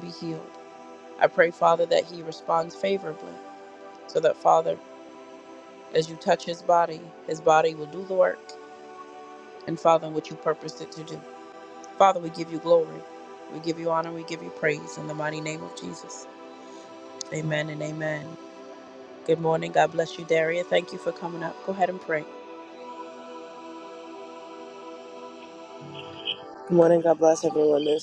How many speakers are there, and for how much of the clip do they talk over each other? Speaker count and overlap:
2, no overlap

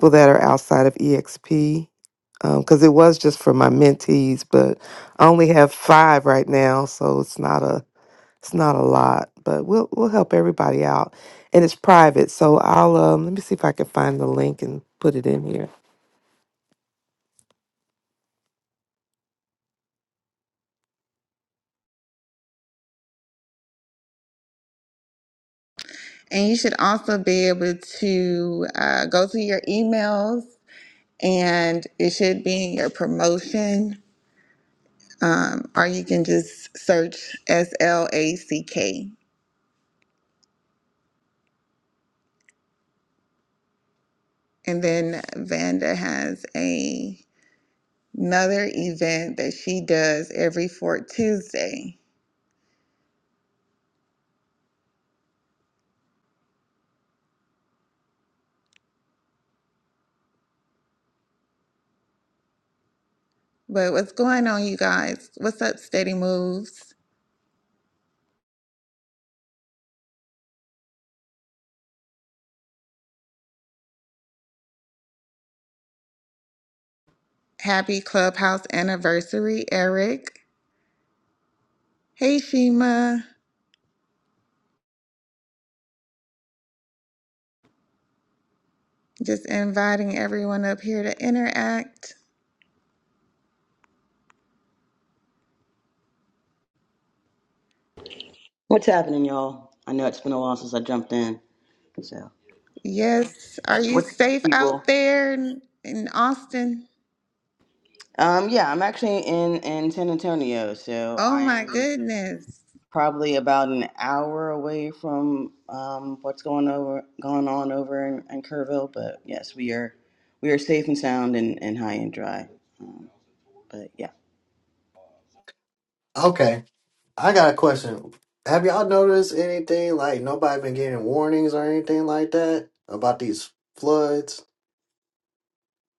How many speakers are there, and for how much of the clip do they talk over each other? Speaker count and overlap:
4, about 1%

